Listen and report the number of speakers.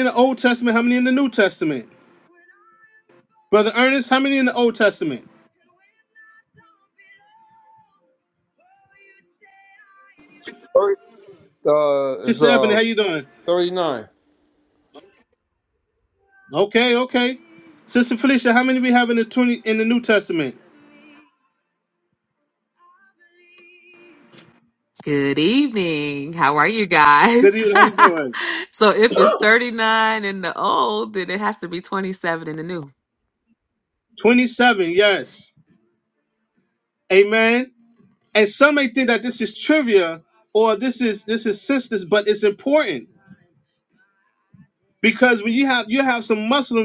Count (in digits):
3